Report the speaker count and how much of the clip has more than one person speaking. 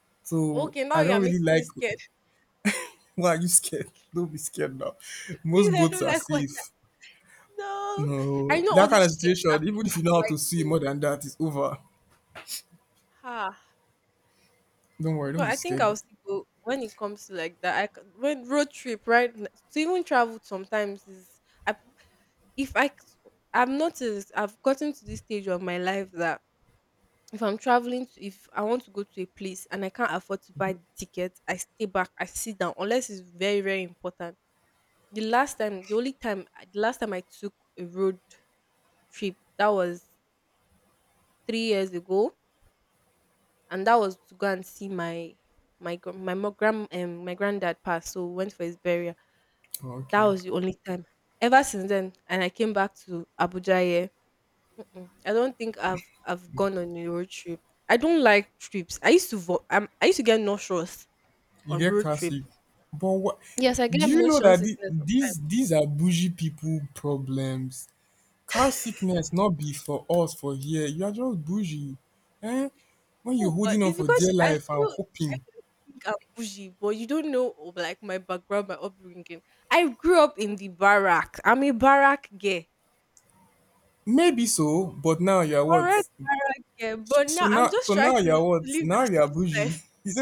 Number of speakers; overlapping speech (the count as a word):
two, about 12%